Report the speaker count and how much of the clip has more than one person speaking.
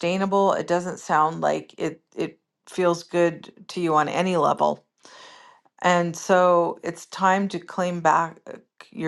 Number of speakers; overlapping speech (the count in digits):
1, no overlap